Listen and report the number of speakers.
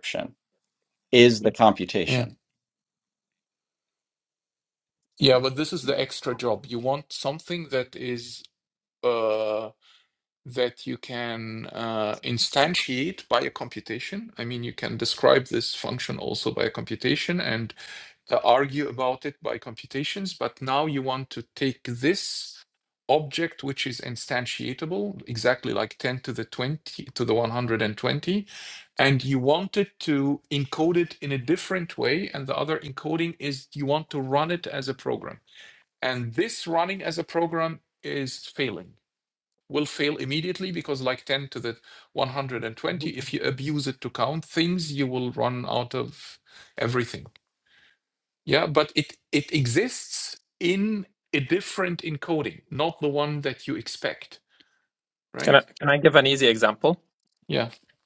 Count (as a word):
three